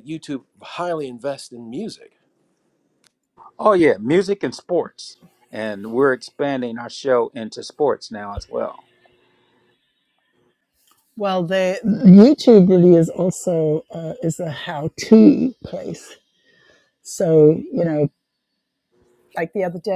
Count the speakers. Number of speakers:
three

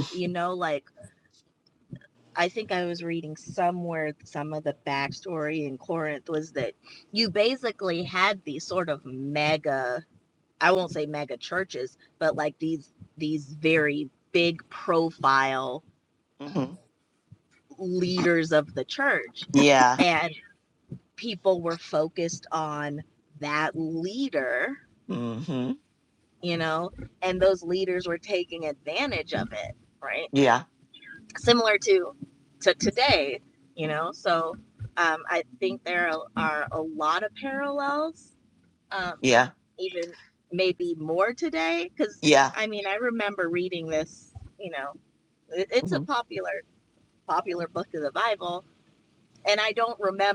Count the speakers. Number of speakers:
two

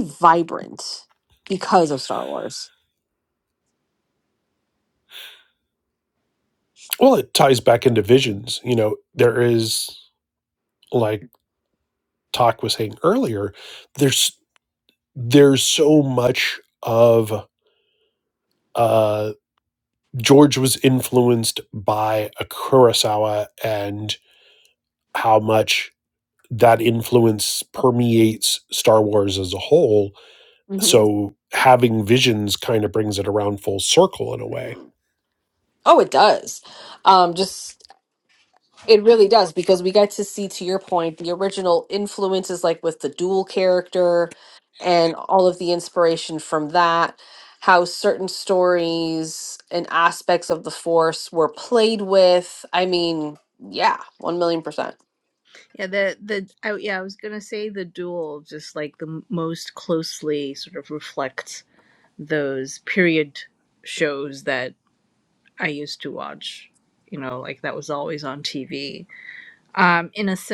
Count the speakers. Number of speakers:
three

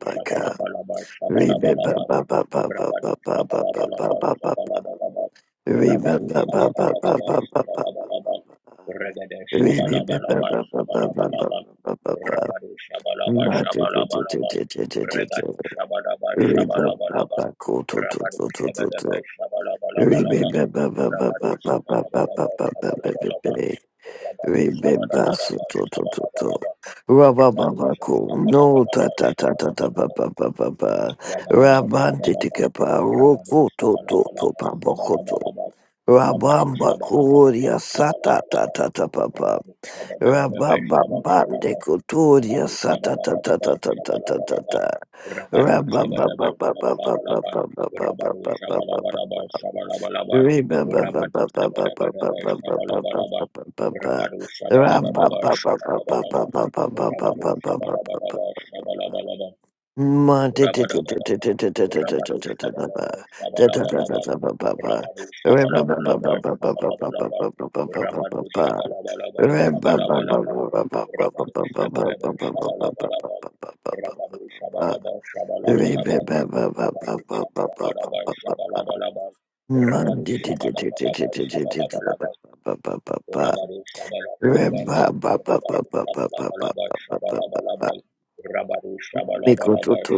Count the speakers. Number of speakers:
two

